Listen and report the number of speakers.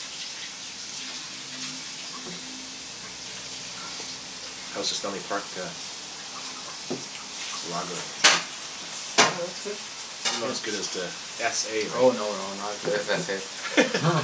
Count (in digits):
2